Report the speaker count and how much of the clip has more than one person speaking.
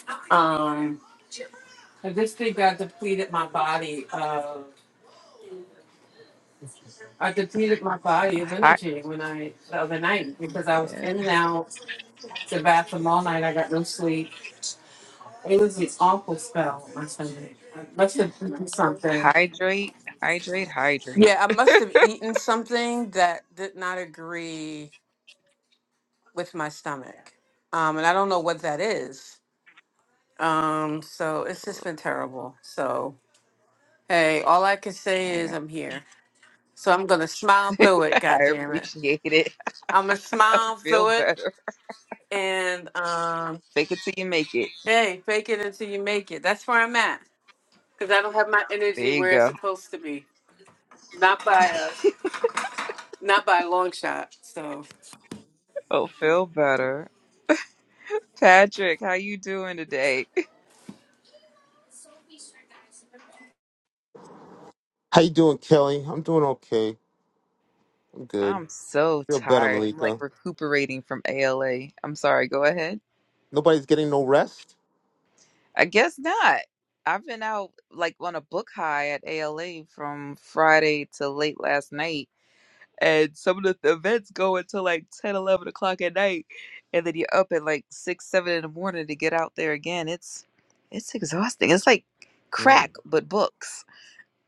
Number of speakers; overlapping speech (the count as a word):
three, about 5%